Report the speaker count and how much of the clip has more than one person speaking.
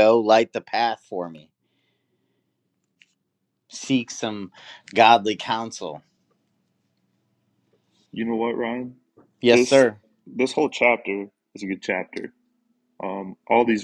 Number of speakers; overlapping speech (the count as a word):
two, about 3%